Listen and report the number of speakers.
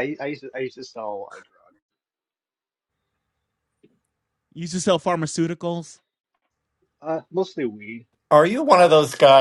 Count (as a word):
three